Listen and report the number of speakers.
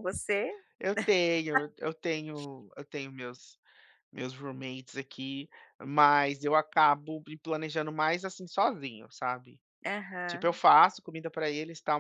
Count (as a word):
two